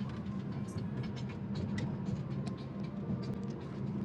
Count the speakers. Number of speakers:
zero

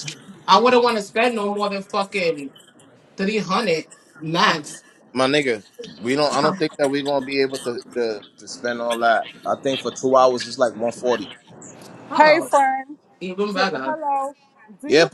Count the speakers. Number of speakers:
three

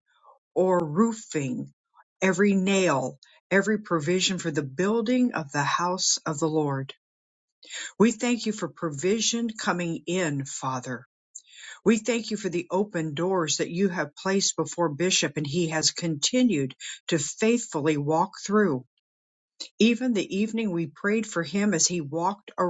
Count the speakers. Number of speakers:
one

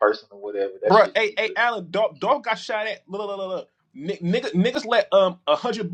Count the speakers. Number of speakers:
two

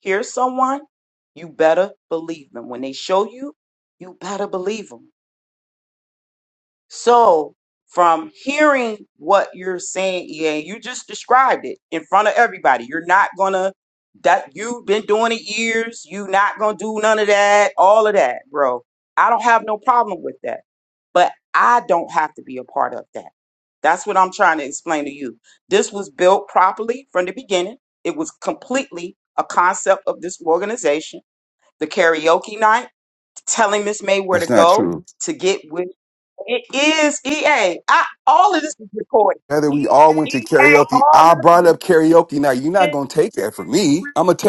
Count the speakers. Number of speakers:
two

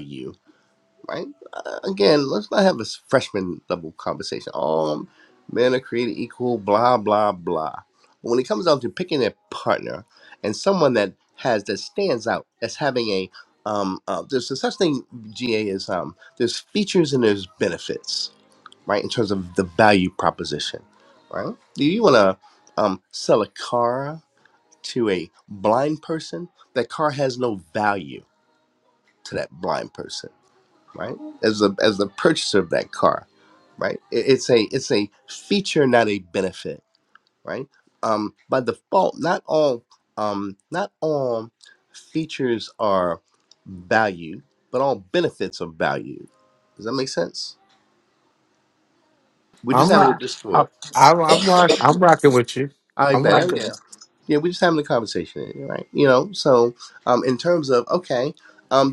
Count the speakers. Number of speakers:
two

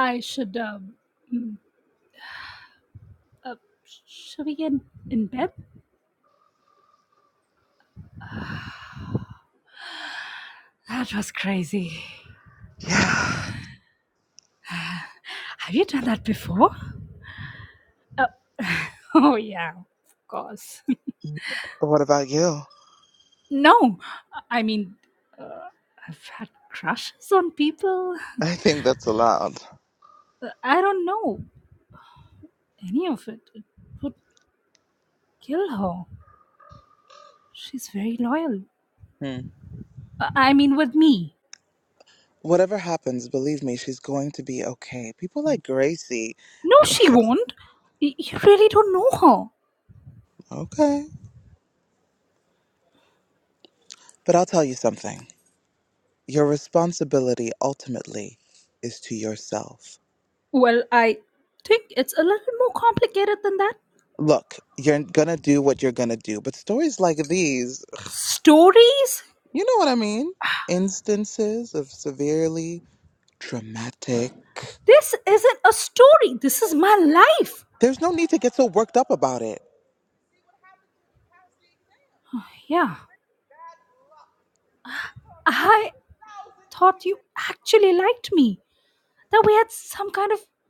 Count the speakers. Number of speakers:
two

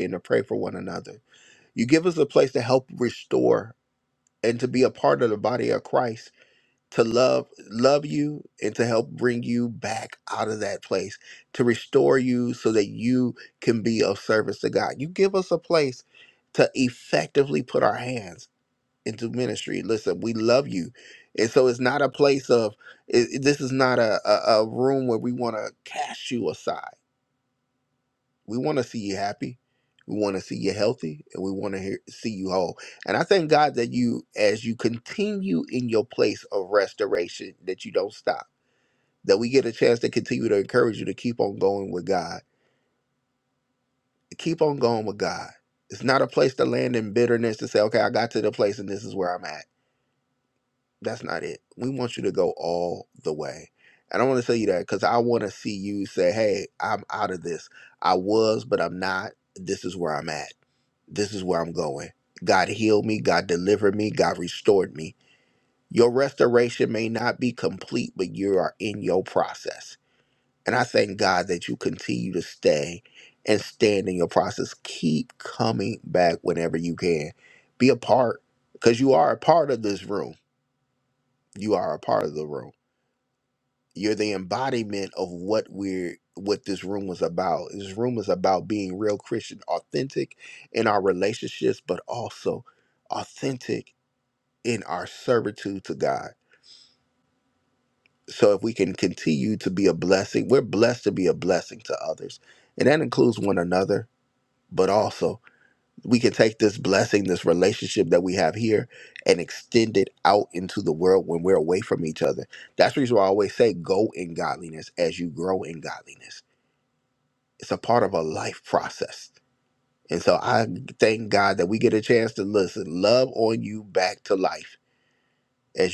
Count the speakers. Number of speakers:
one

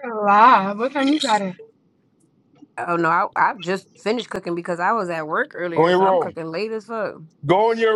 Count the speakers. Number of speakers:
three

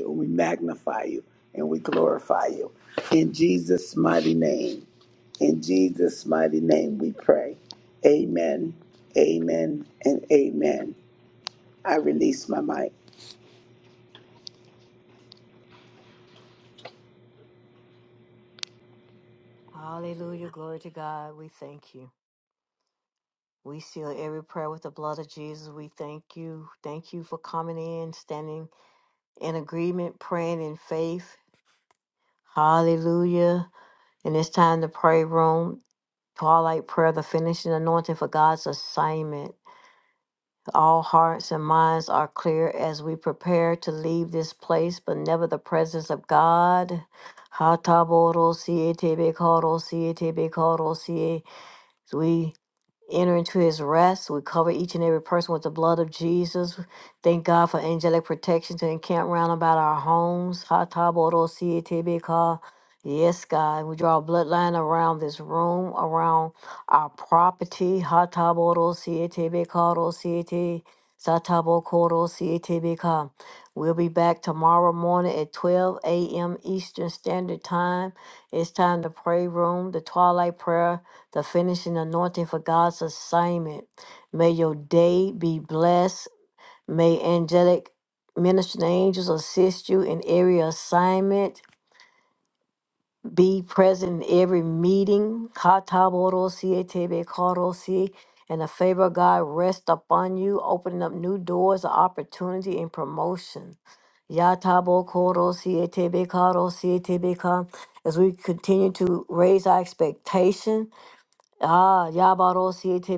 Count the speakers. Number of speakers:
two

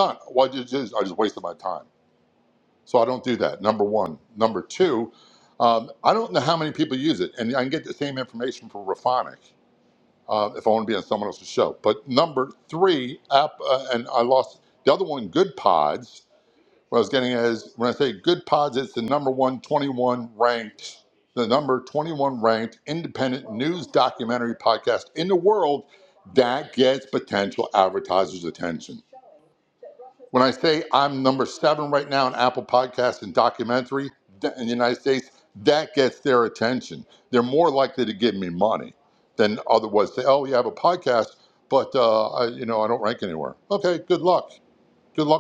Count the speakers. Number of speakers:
one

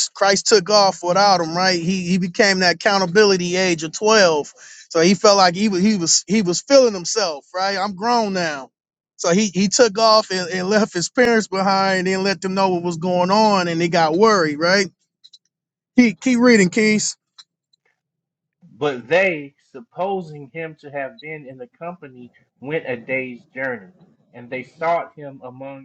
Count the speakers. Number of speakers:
two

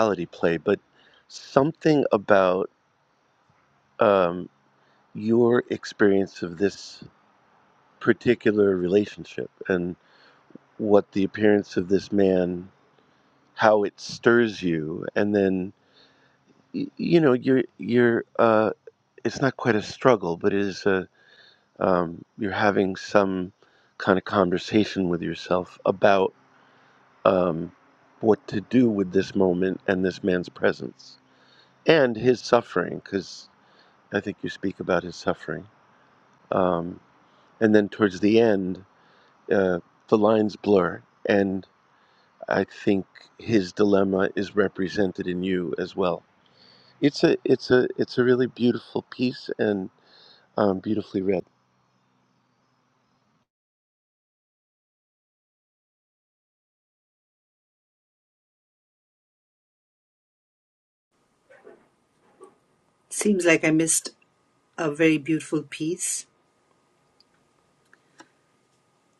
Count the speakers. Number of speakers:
two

